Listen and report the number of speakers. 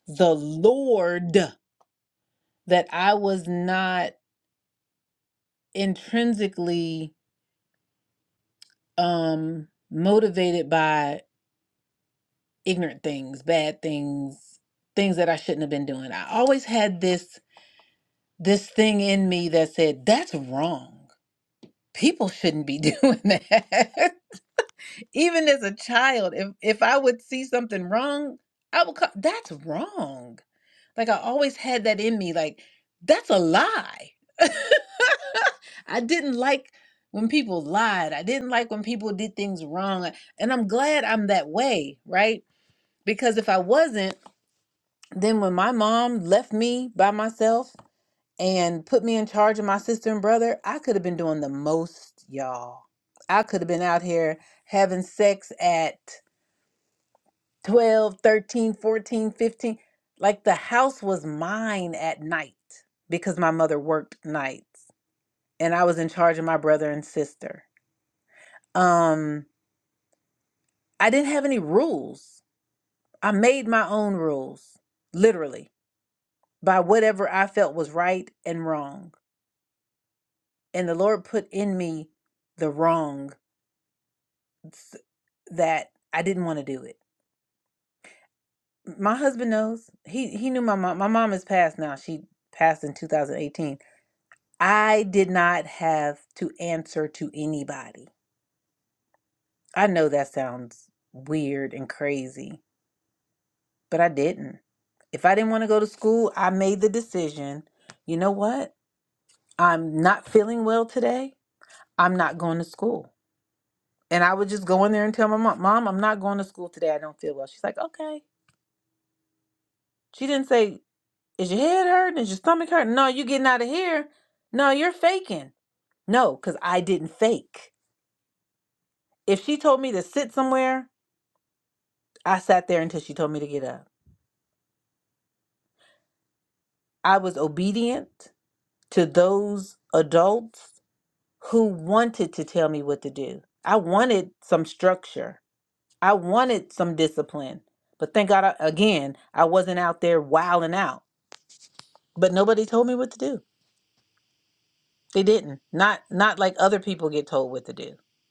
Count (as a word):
one